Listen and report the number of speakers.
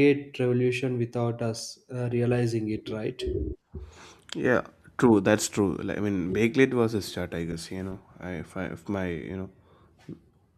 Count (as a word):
two